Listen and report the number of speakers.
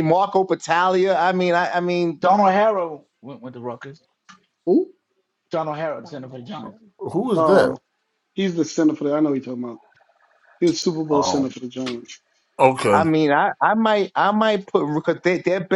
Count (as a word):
four